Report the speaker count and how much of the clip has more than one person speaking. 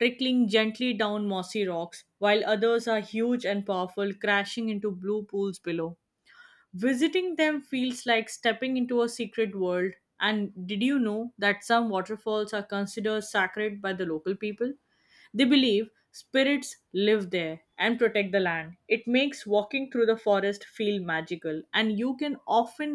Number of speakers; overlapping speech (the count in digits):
1, no overlap